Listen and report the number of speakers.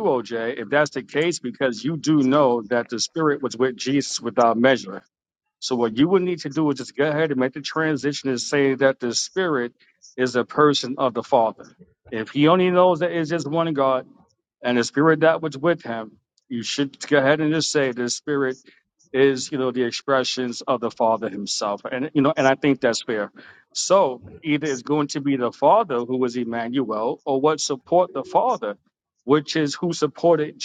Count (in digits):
1